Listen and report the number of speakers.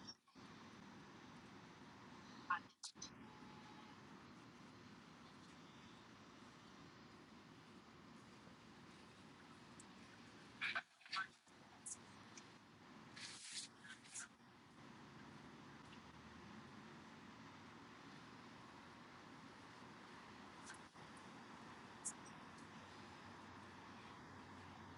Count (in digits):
0